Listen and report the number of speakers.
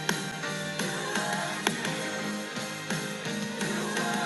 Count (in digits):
0